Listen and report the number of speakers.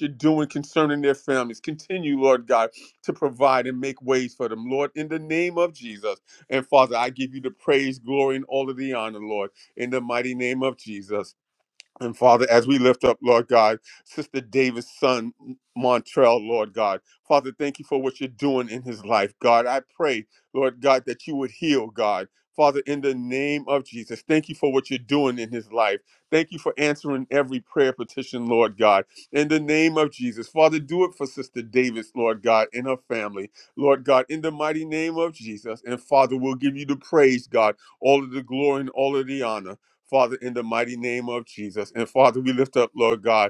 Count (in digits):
1